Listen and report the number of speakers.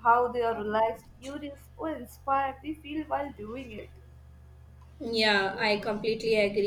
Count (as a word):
two